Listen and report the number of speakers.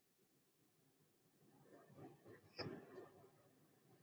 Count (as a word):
zero